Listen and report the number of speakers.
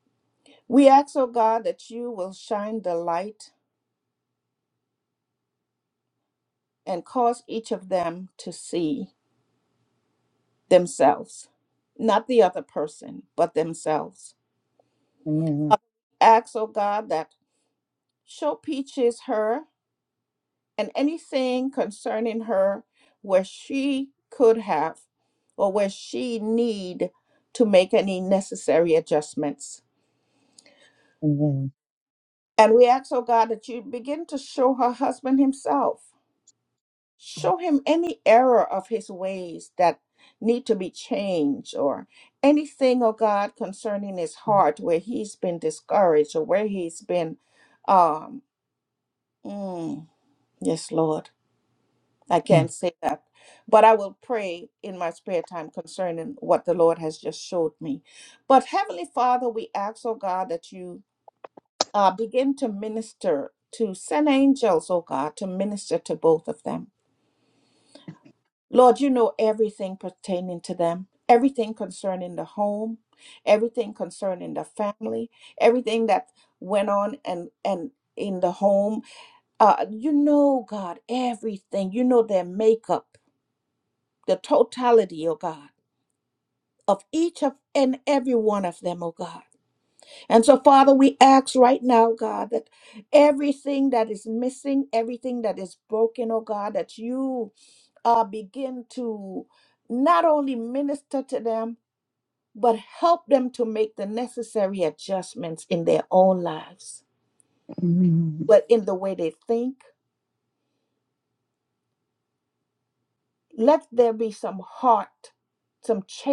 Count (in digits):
2